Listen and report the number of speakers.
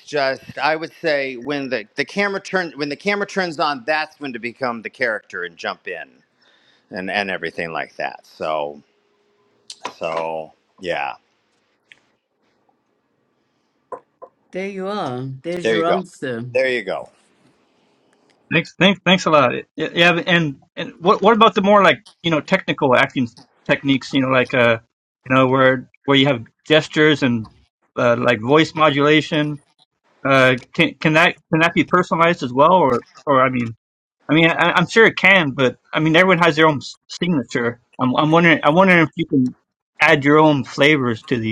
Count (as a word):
three